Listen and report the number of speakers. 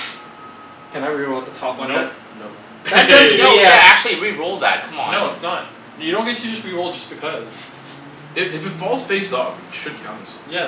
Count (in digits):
4